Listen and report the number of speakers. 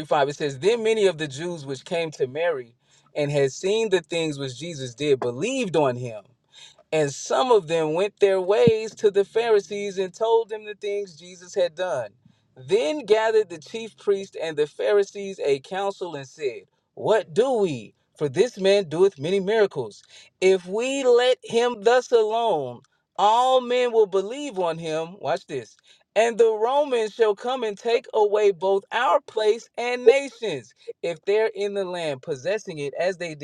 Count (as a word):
one